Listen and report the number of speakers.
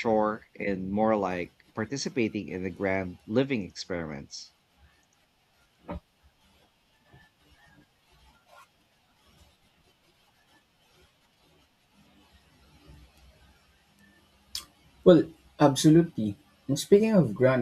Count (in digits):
2